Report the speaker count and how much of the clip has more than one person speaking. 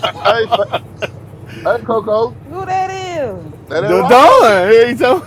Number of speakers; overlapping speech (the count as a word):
three, about 14%